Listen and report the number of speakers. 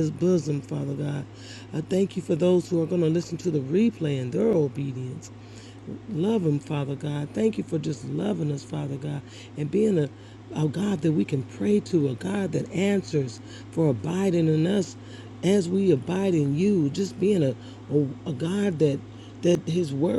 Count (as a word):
one